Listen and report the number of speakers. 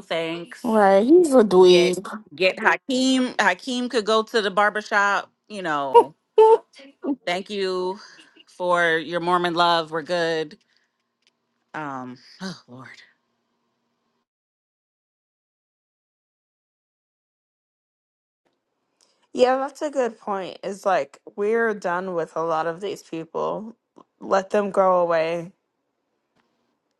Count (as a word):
three